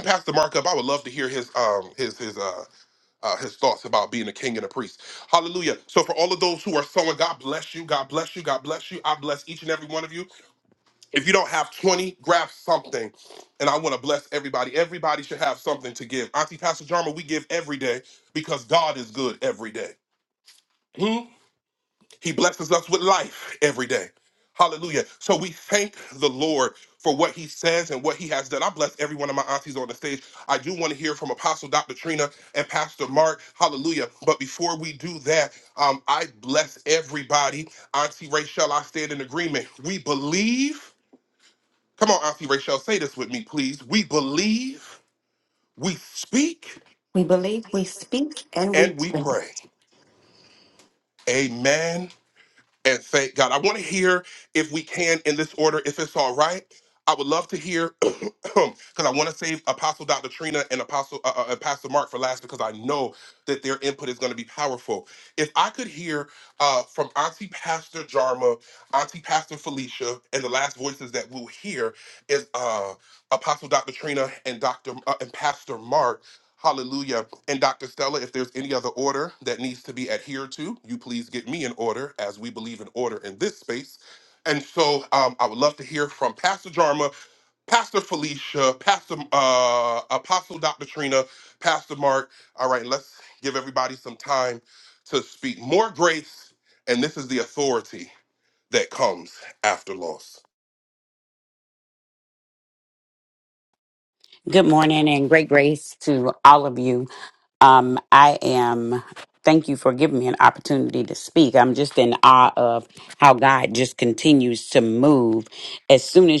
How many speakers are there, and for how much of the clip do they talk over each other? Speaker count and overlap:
3, about 1%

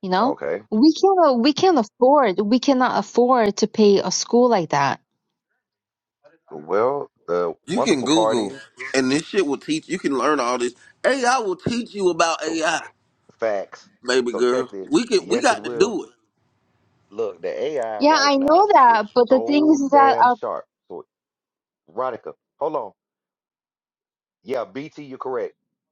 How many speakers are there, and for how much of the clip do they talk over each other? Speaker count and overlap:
3, about 17%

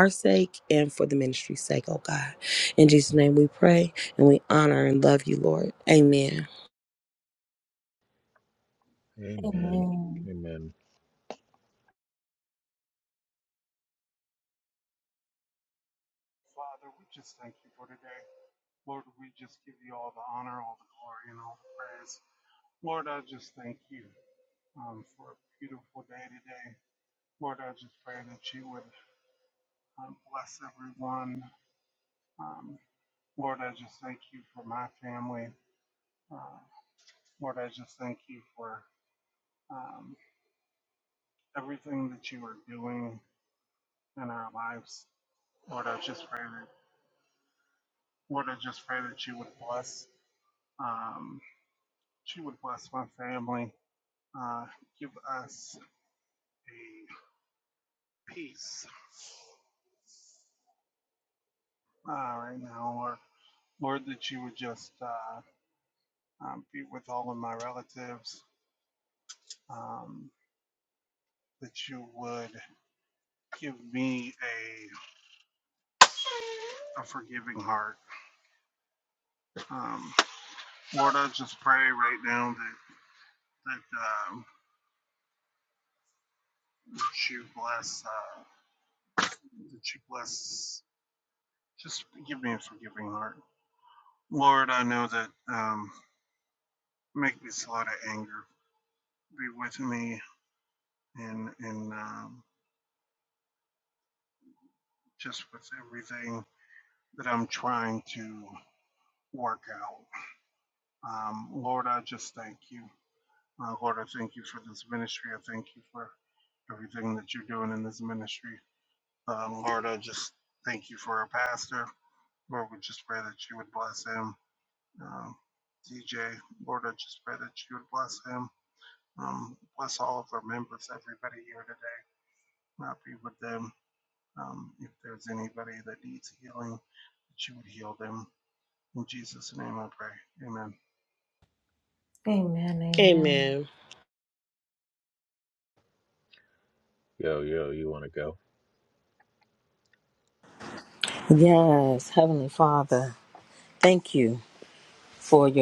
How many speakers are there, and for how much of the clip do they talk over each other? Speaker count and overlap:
5, about 1%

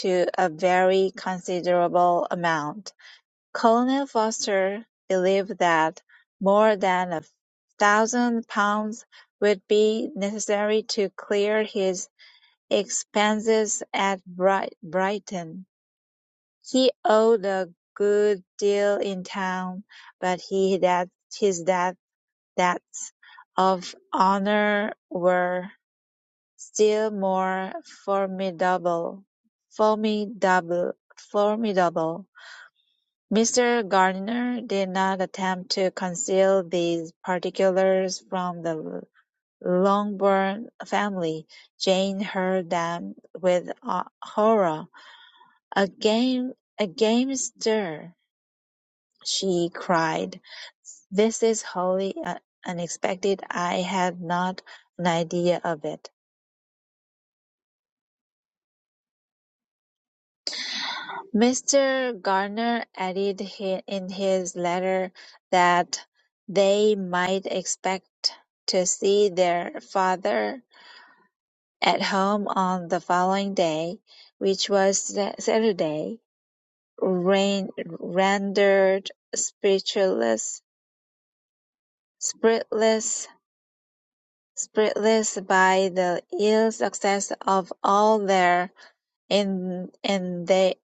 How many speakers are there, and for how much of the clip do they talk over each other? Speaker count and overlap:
1, no overlap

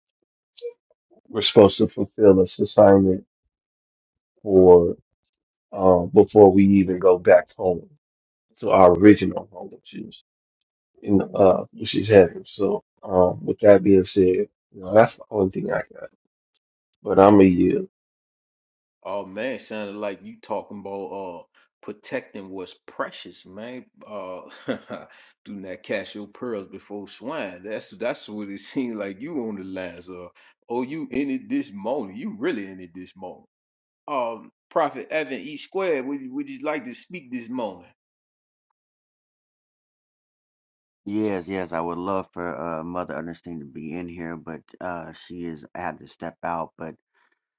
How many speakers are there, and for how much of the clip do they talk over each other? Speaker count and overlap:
3, no overlap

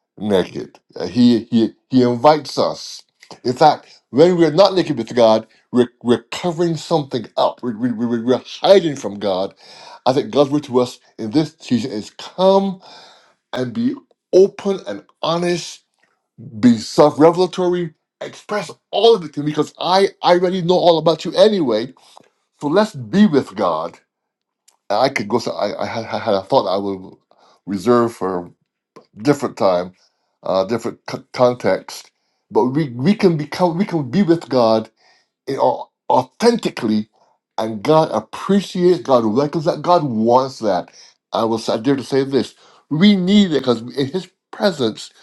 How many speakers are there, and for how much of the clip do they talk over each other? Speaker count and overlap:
1, no overlap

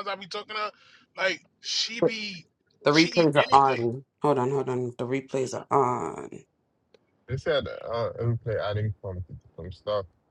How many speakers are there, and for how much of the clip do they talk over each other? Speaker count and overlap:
3, about 10%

